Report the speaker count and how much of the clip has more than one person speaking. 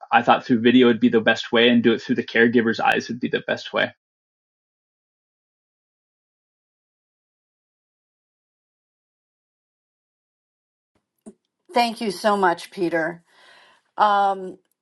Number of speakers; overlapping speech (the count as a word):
two, no overlap